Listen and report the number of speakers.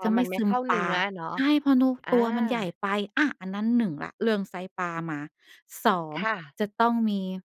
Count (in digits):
2